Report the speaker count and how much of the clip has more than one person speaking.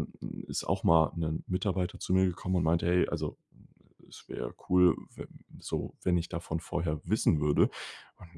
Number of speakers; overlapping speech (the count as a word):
one, no overlap